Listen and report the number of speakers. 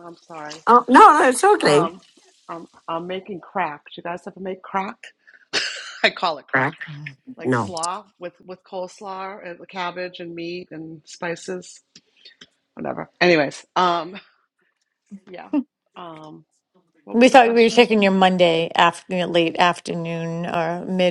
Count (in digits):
3